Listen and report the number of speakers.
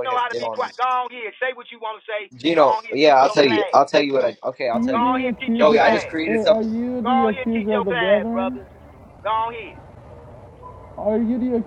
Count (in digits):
3